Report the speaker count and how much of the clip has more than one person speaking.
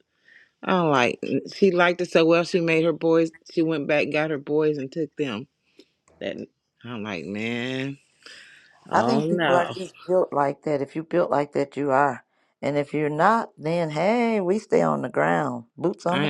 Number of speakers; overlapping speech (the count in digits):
2, about 7%